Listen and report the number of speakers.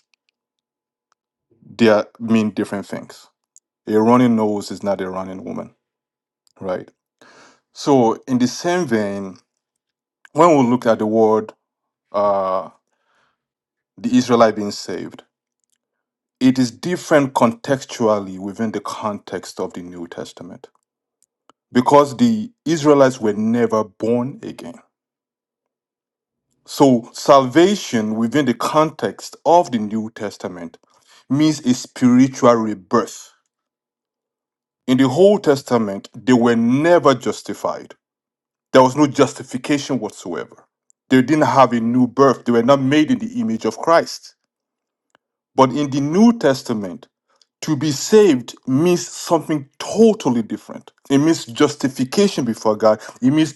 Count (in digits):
1